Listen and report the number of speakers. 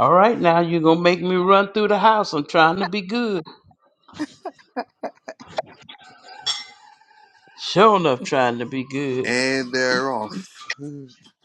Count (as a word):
two